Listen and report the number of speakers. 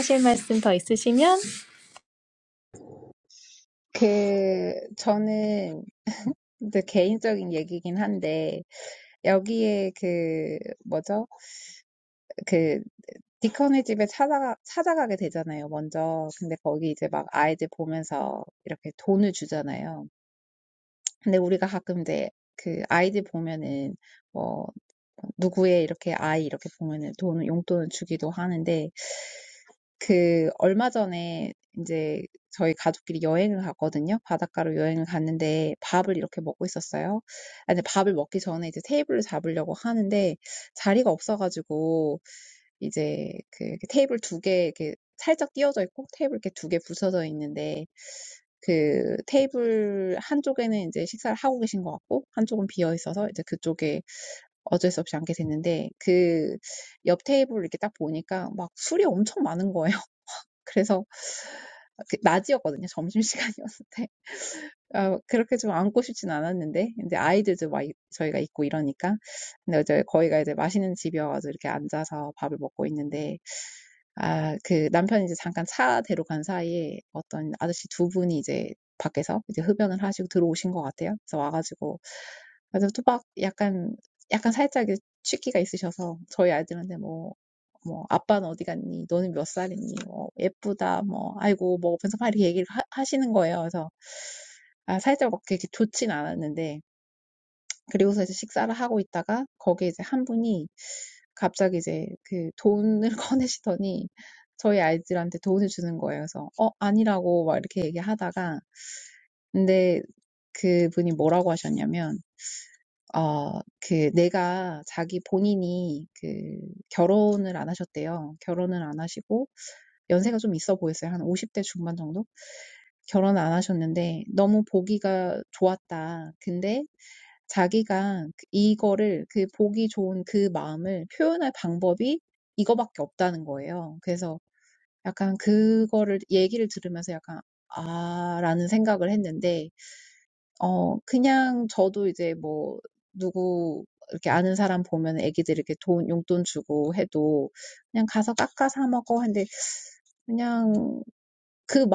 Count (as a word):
two